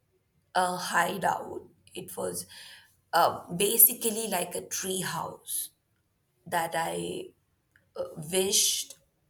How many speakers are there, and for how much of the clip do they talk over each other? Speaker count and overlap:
1, no overlap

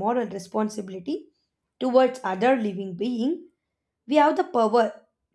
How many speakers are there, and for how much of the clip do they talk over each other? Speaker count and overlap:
1, no overlap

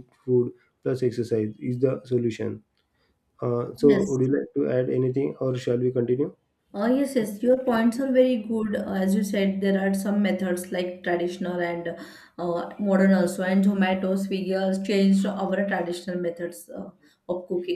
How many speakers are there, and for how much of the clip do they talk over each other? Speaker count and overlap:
2, about 2%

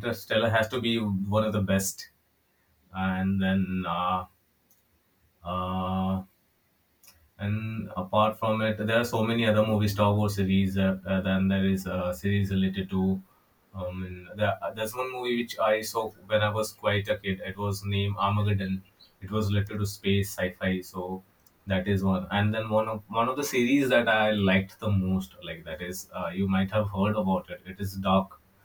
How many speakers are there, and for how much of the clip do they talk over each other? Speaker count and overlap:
1, no overlap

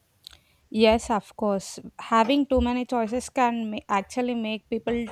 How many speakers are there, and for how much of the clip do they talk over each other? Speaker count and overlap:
1, no overlap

